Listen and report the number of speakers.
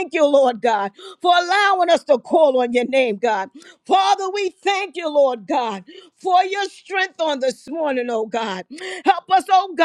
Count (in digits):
1